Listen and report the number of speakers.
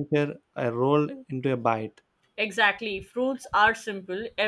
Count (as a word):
two